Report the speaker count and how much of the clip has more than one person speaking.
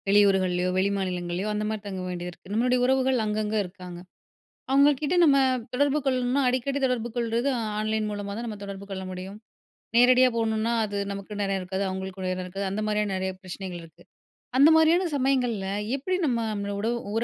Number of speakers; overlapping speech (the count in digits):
1, no overlap